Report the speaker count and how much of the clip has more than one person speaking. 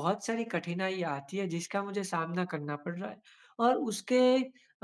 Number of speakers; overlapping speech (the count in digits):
1, no overlap